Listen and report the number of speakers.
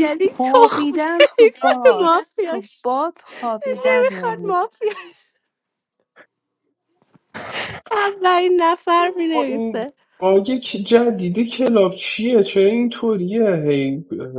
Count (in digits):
3